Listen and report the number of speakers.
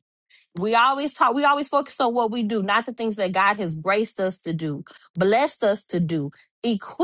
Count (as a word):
one